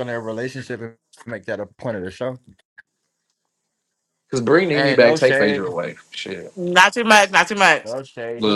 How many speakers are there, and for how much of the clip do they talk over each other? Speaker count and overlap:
3, about 14%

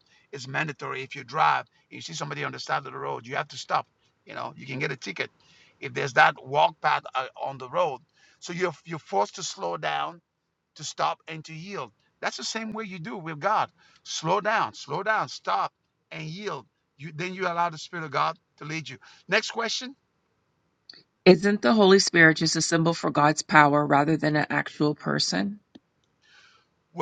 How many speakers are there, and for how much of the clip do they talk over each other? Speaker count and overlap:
2, no overlap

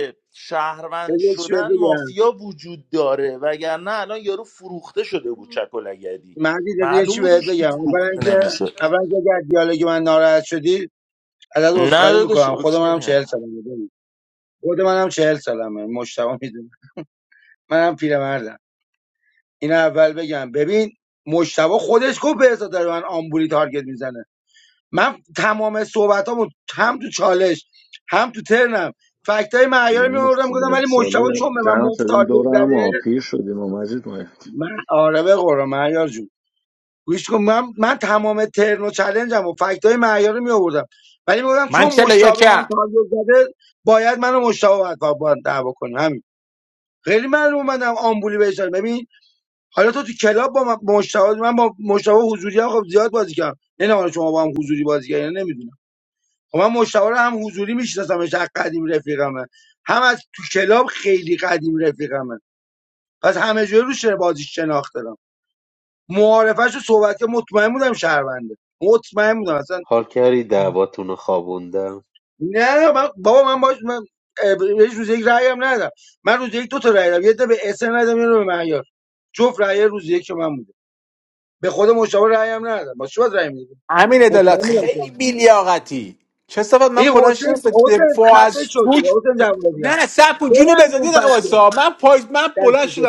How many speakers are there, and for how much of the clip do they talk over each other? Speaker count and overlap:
5, about 14%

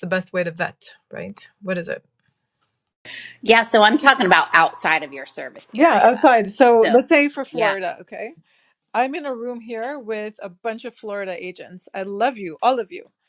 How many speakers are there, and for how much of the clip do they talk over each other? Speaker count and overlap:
2, about 6%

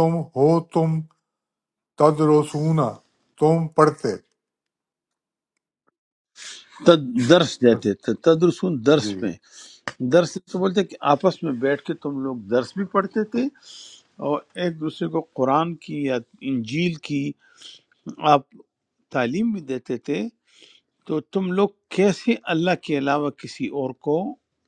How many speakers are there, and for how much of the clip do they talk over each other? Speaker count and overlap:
2, about 1%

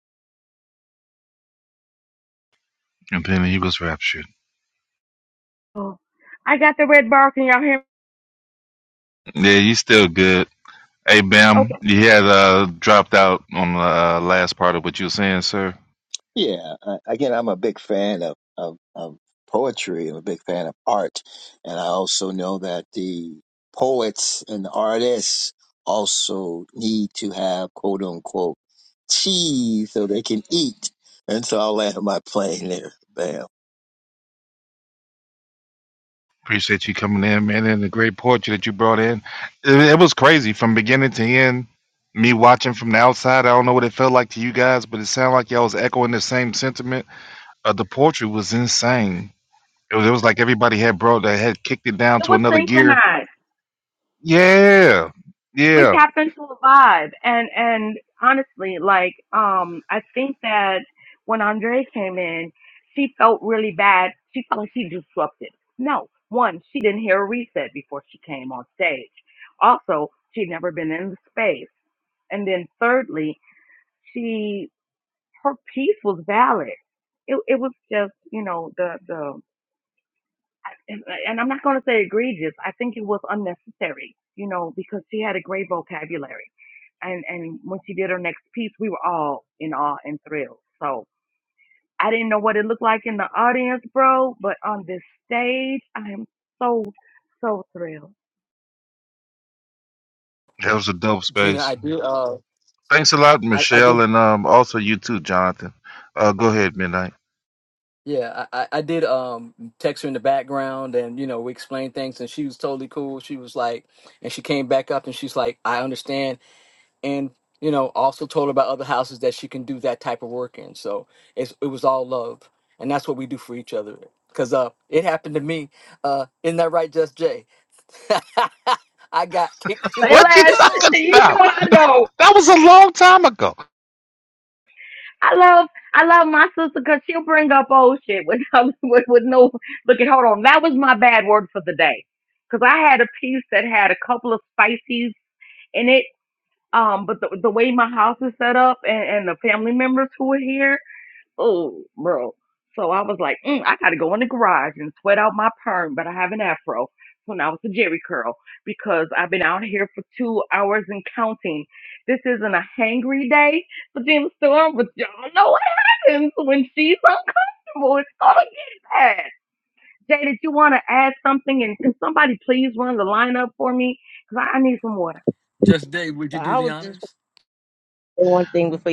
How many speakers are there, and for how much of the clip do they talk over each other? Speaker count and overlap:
5, about 2%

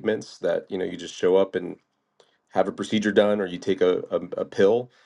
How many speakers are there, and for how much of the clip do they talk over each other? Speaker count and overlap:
1, no overlap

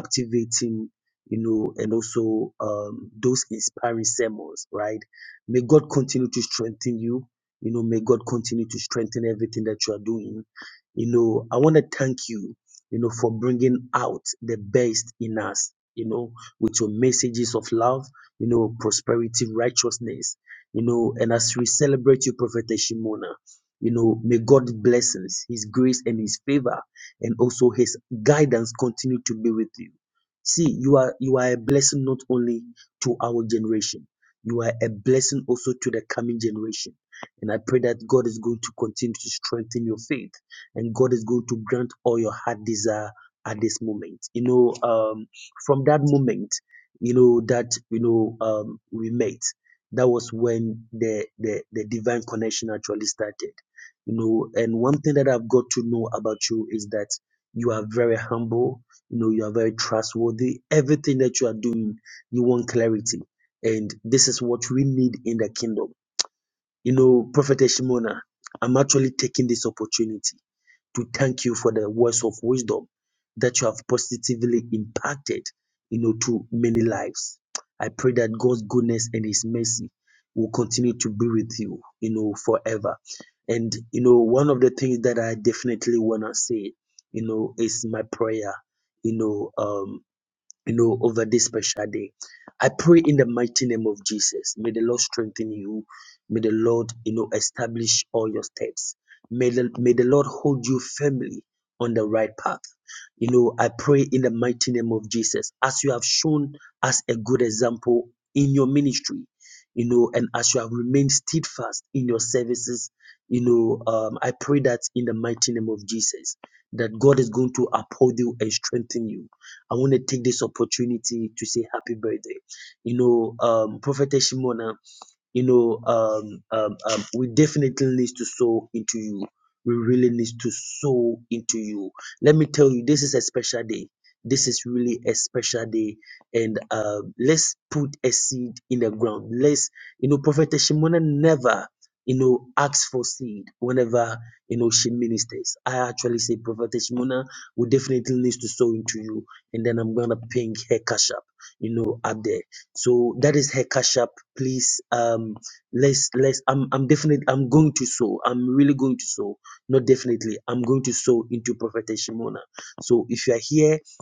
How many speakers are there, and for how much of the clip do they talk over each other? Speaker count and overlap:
1, no overlap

